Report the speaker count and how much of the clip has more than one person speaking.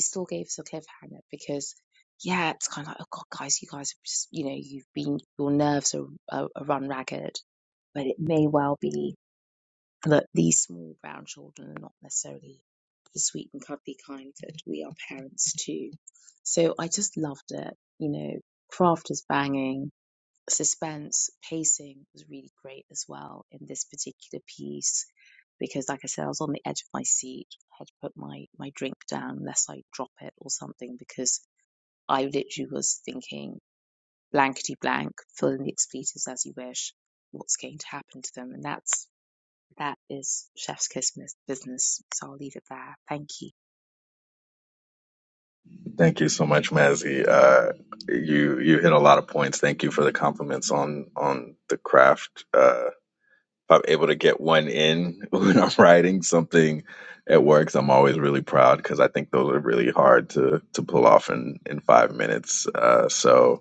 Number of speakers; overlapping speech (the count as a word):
two, no overlap